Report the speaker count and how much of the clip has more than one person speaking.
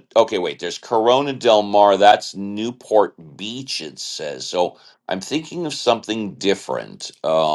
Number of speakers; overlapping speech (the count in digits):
1, no overlap